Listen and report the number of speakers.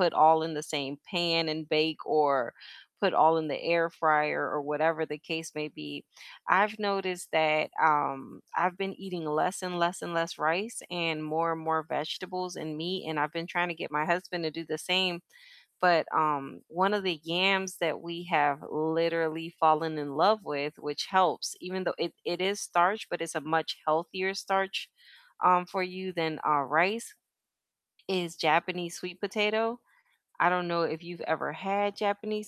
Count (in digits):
1